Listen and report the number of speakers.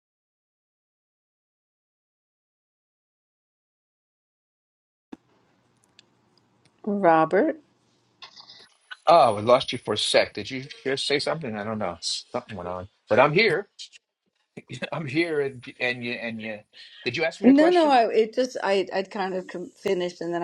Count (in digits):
2